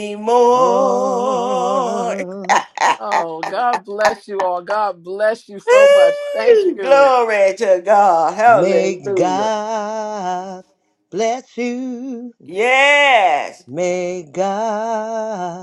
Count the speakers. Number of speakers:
three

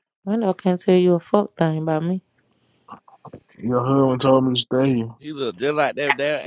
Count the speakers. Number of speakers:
three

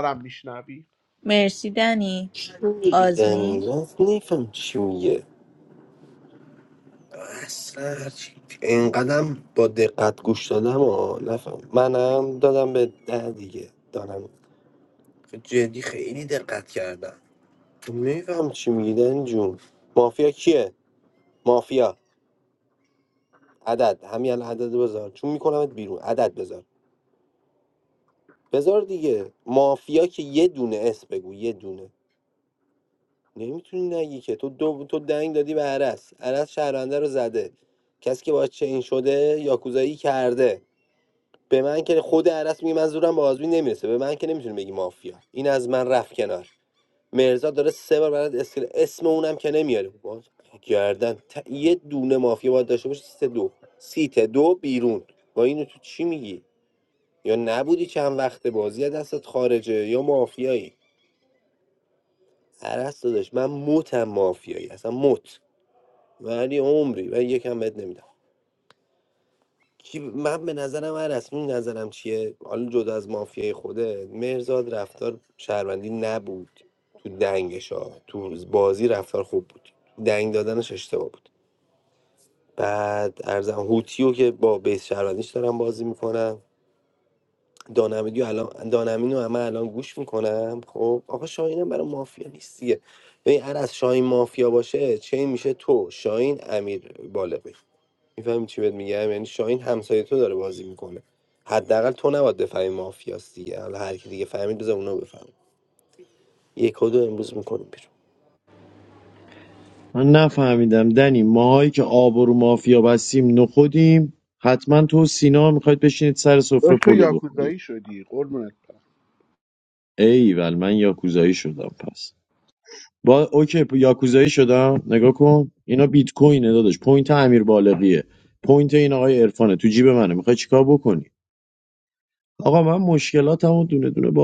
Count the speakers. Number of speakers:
four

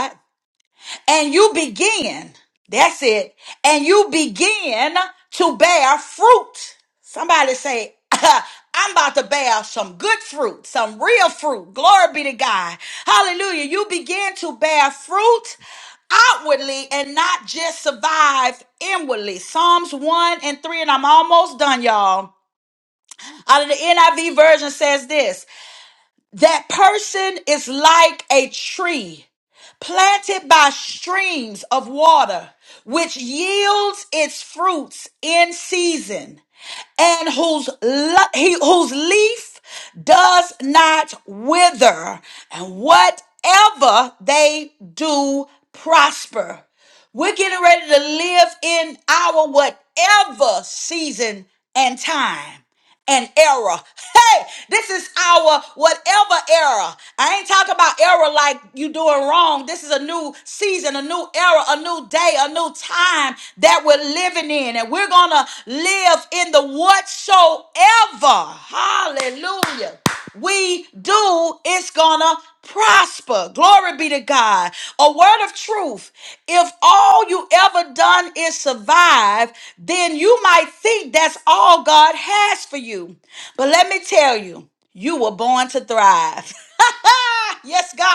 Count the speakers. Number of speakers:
one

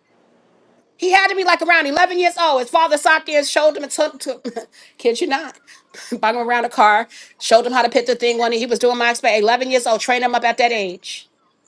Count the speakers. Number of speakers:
one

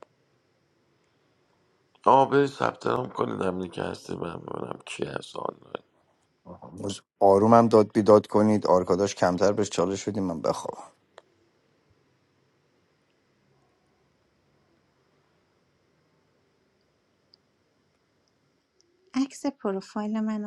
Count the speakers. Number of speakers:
three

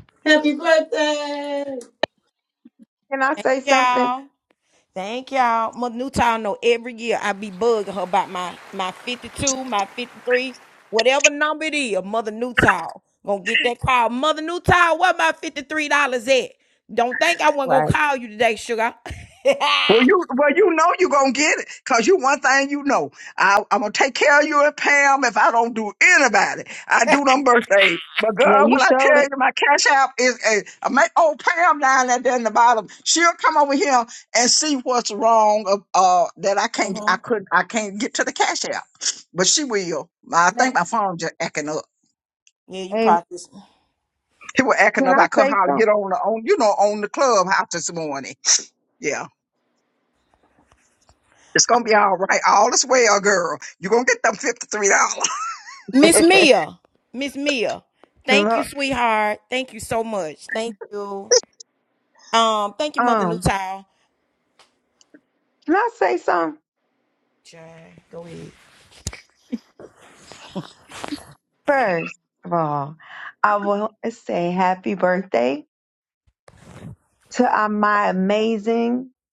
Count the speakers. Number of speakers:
four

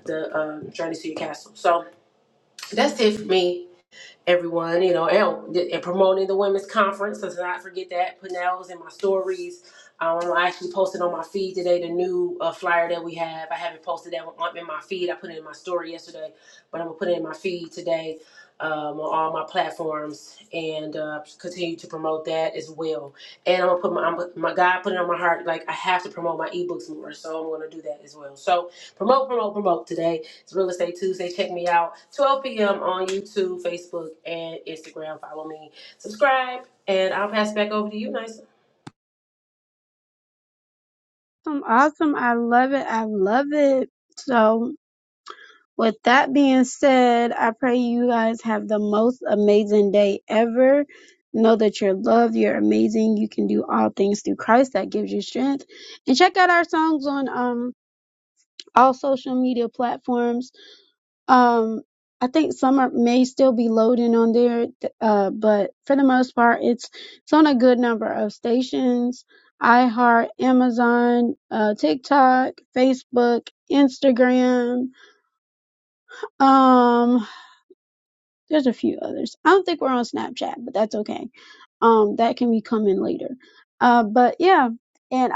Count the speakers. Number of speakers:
two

